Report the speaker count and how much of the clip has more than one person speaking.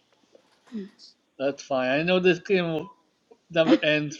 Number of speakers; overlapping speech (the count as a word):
one, no overlap